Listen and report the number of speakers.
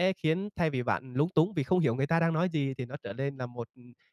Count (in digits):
1